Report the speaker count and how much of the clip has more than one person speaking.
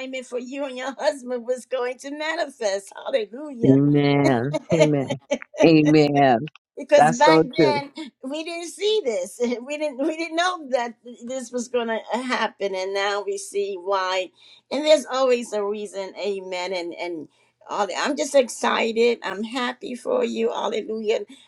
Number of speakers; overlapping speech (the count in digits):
2, about 5%